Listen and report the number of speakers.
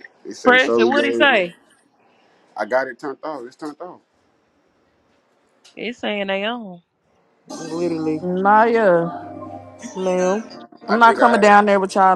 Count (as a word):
four